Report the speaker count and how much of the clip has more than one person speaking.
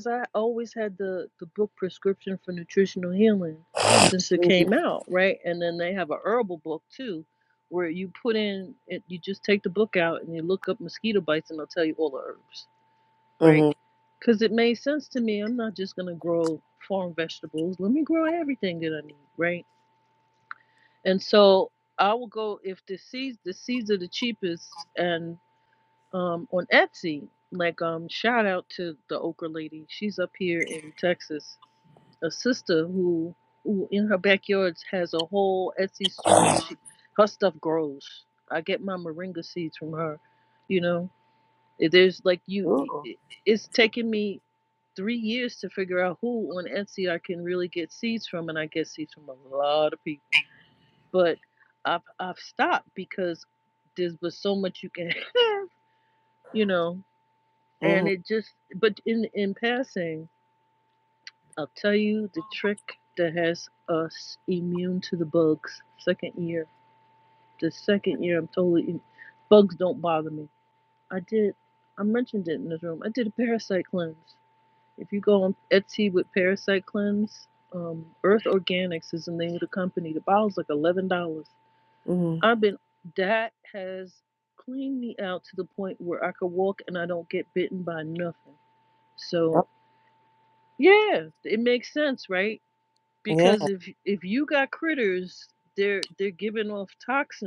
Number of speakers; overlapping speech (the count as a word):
two, about 1%